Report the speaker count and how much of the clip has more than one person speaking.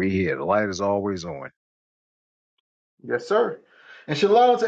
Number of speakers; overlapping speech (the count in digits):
2, no overlap